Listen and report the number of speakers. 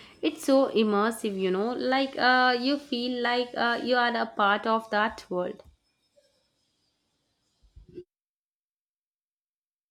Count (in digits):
1